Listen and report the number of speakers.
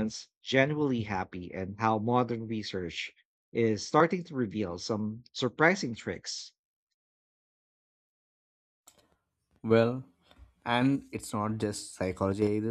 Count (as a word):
two